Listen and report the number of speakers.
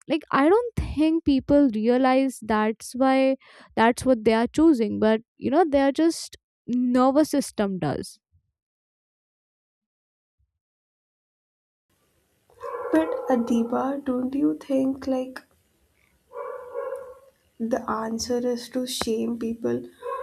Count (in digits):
2